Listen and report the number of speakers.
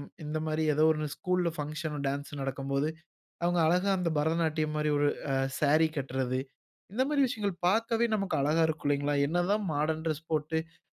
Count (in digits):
1